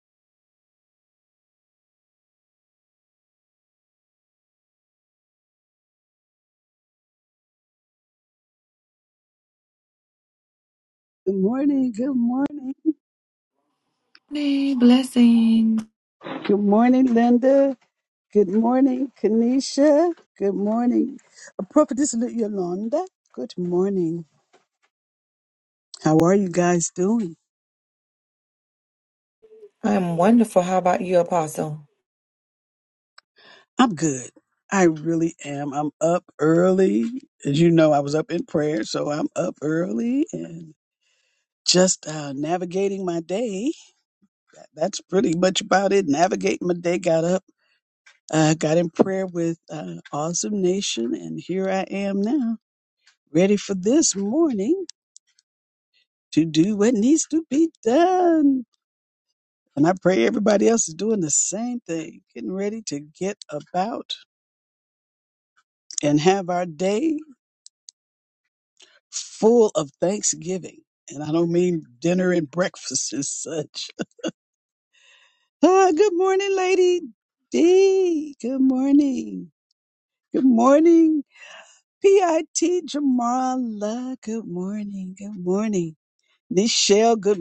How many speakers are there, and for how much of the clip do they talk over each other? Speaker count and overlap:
2, no overlap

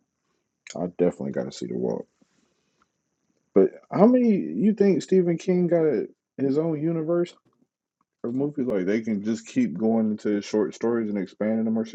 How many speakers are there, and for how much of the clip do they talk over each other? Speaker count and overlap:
1, no overlap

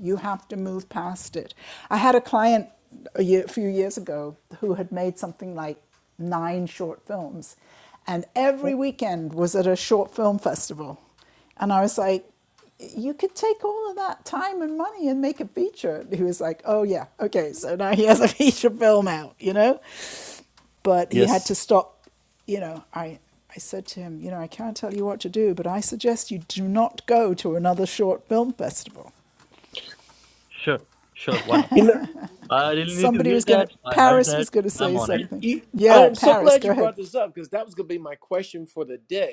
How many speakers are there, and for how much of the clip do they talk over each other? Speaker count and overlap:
3, about 9%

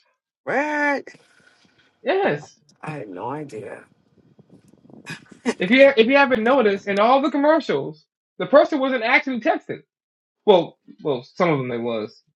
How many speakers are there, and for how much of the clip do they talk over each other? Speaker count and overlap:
2, no overlap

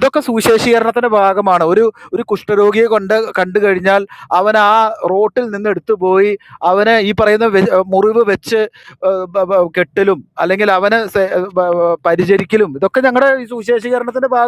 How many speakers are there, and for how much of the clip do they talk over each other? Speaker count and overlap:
1, no overlap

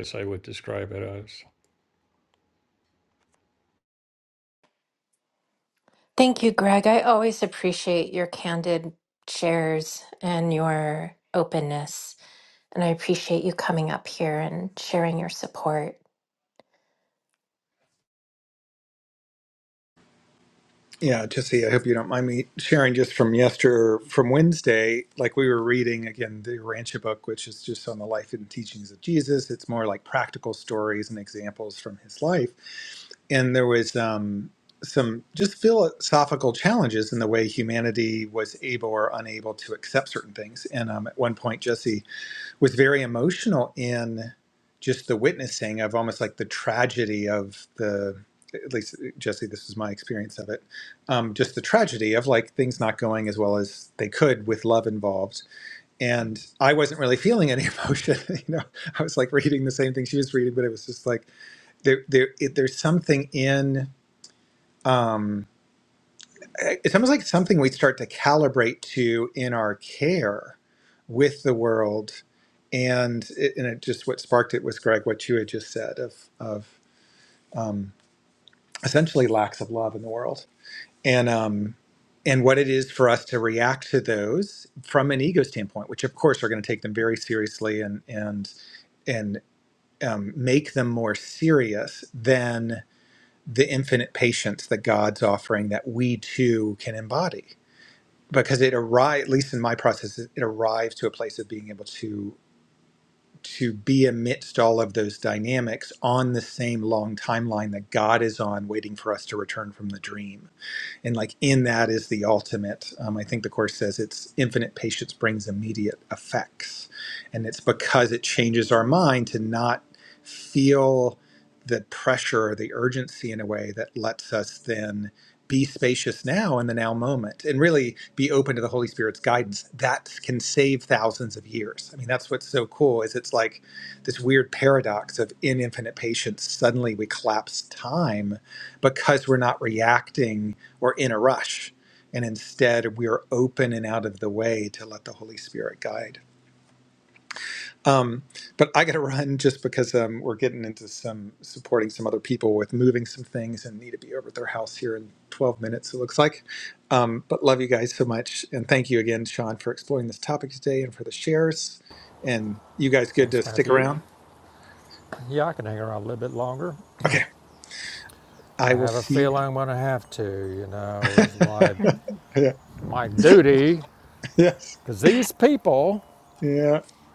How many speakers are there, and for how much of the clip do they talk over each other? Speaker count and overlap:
4, about 1%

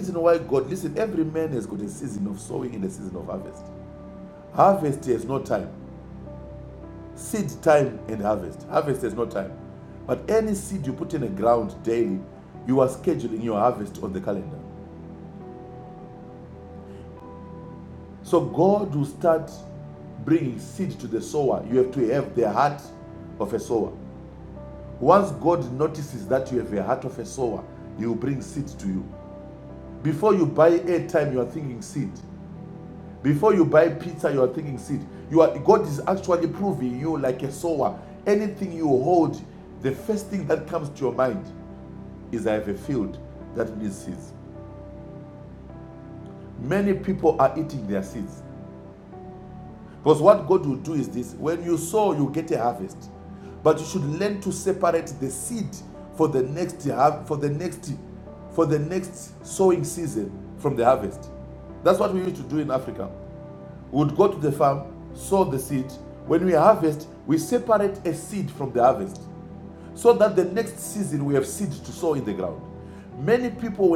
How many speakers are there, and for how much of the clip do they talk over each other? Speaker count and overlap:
1, no overlap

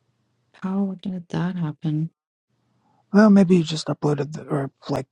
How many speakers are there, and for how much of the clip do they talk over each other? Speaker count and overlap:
2, no overlap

